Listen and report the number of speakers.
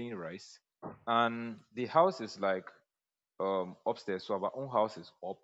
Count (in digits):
1